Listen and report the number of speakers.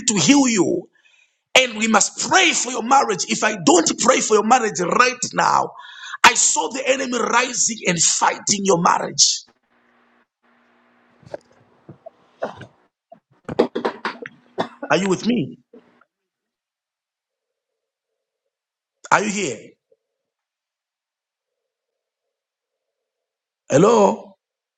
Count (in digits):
1